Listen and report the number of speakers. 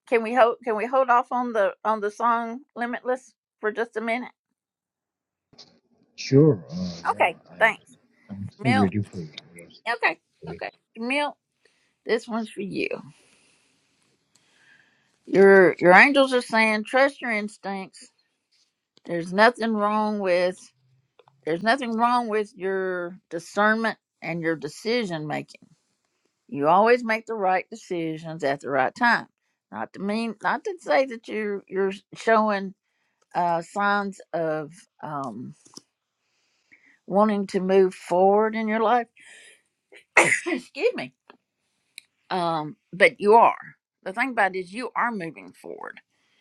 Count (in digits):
2